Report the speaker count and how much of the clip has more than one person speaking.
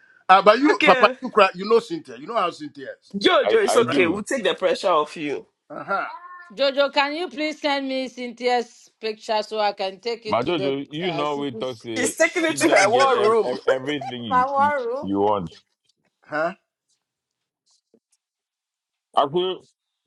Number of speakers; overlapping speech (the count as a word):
four, about 22%